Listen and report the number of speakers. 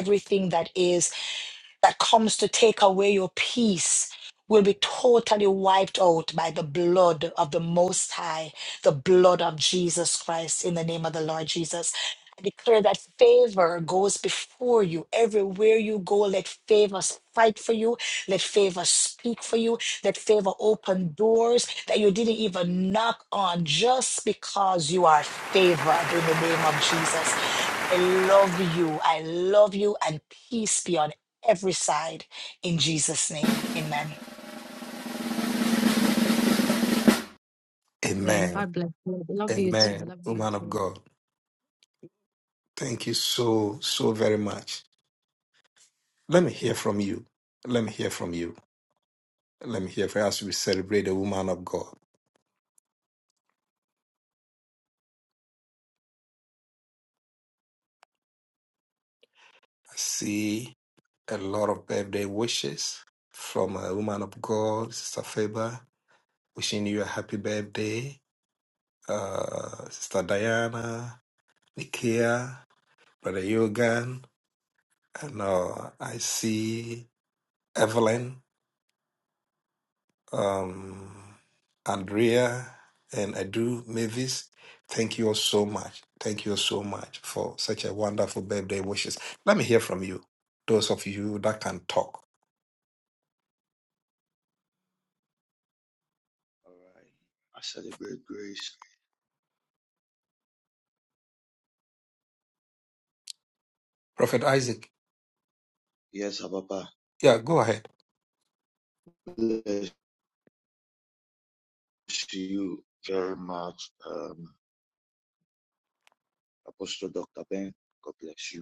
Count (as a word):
four